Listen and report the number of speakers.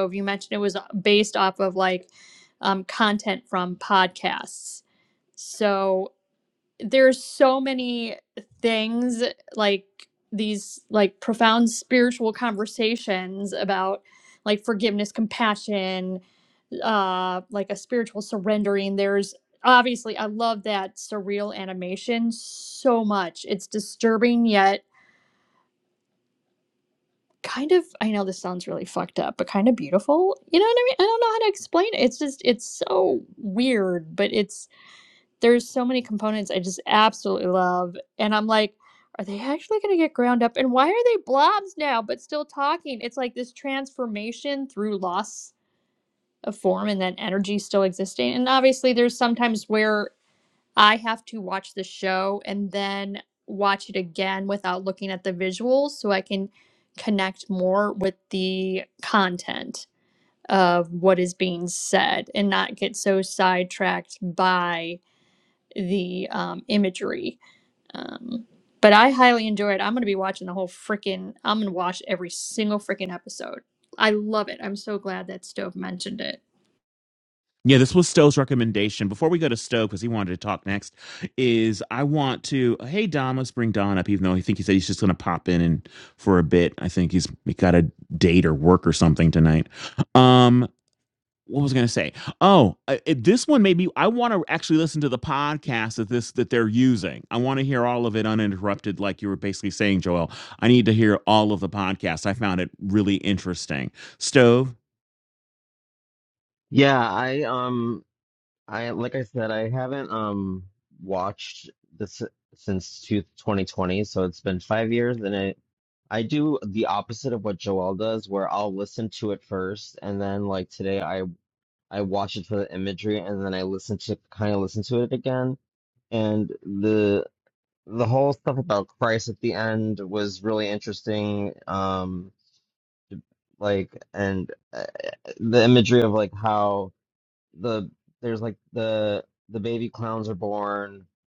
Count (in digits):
3